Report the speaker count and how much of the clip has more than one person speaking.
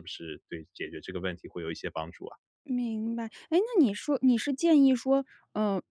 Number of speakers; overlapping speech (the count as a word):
two, no overlap